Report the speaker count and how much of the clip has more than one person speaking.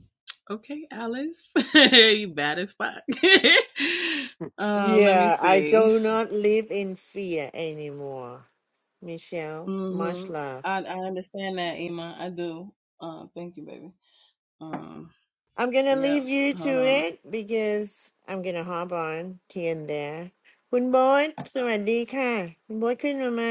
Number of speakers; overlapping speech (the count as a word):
two, about 14%